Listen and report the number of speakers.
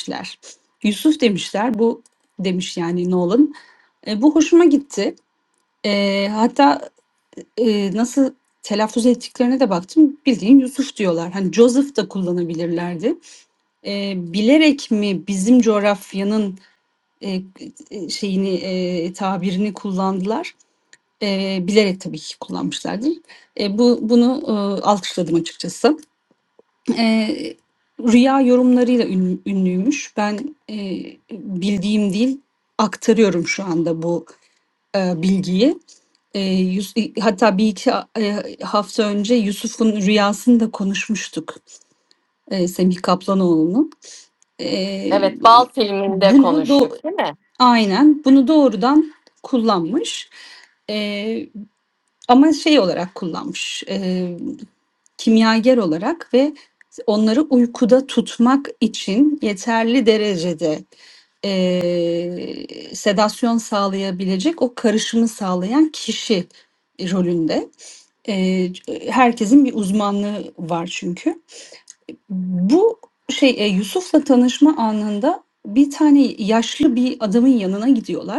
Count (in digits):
2